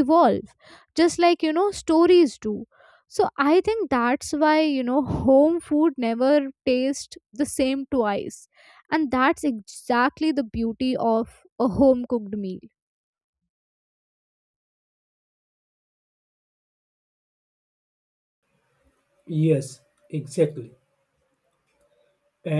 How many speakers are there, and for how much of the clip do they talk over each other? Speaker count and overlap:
2, no overlap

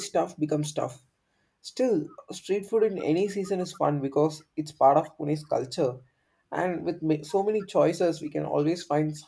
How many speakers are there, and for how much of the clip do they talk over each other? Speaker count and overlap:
1, no overlap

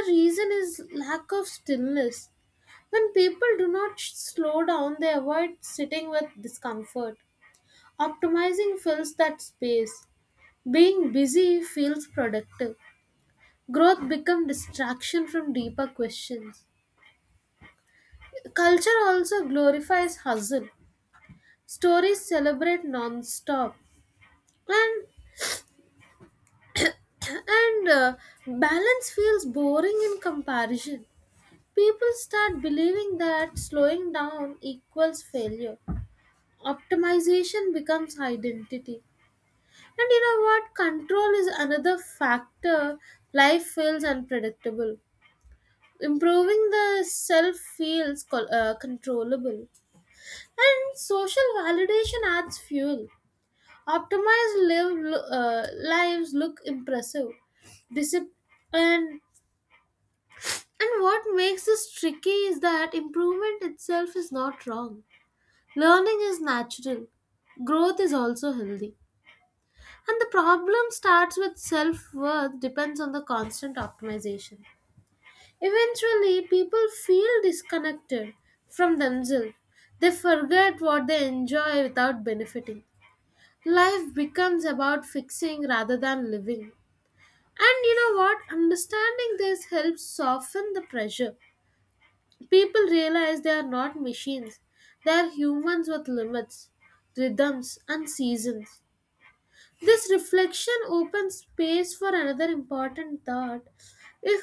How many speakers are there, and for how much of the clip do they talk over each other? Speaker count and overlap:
1, no overlap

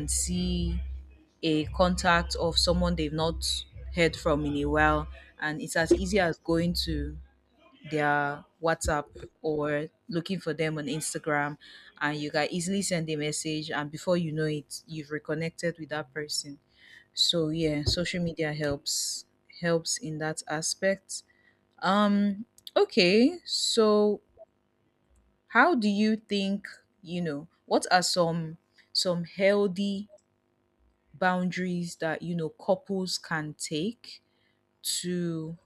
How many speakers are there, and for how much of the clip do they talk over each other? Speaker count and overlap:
1, no overlap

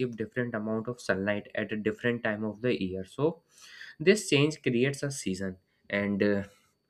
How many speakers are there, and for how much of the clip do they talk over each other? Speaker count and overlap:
1, no overlap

